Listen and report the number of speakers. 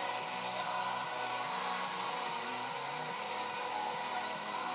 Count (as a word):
zero